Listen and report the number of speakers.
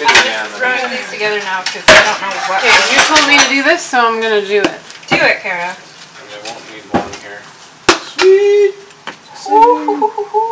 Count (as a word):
four